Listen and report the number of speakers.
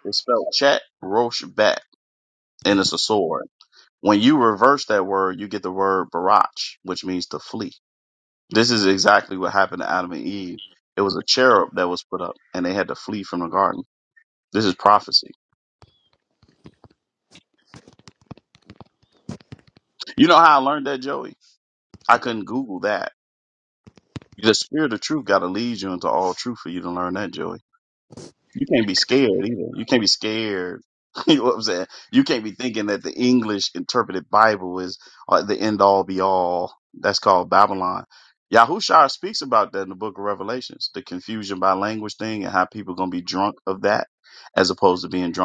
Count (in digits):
1